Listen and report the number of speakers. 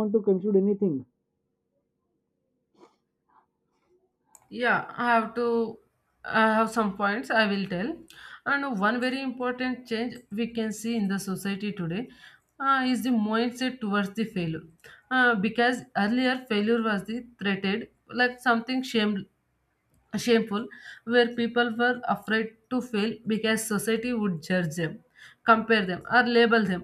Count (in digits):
2